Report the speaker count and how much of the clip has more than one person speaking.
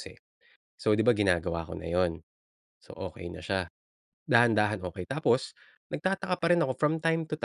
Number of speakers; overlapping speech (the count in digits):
1, no overlap